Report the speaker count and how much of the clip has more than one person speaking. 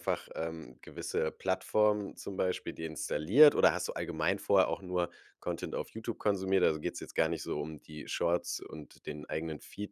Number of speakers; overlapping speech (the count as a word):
one, no overlap